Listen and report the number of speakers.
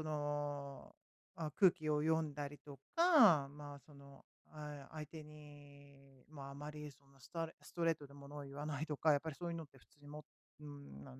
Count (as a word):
one